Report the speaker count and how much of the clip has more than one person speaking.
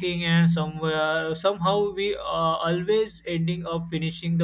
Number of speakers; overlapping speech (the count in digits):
1, no overlap